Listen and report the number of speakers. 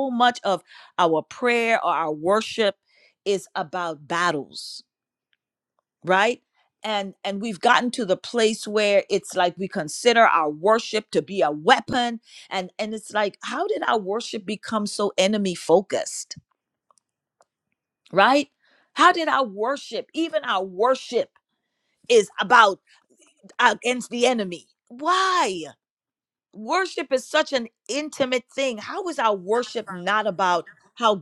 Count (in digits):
1